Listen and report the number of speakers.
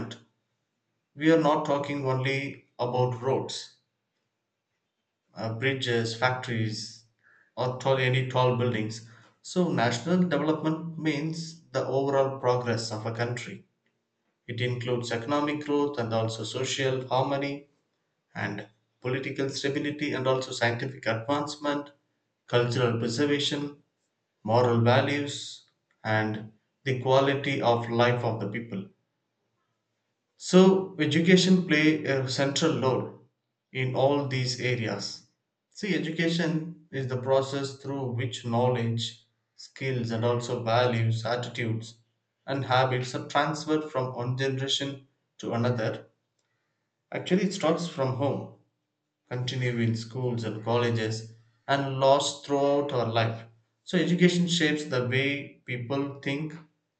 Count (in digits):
1